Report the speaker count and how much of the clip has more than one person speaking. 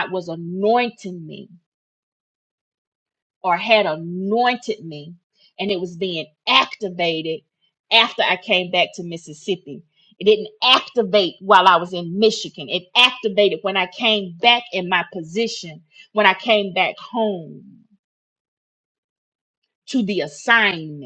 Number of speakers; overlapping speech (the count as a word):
one, no overlap